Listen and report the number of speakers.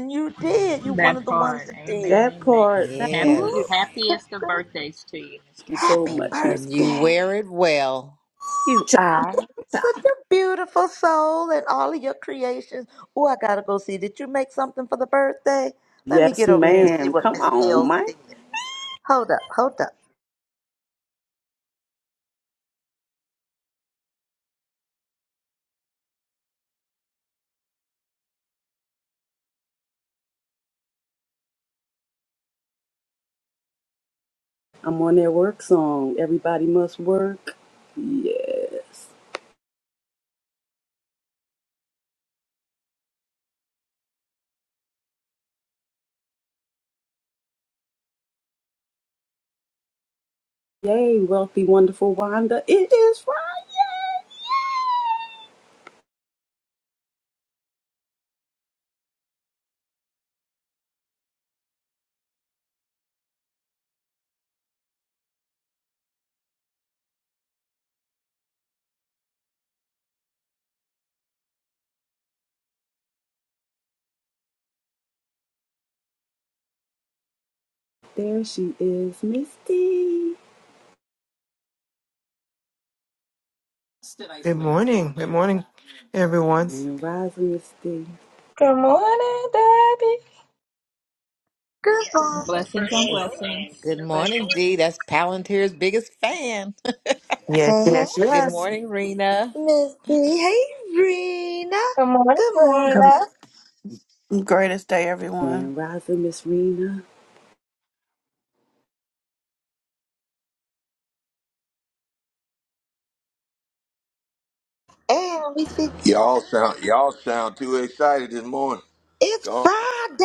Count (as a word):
eight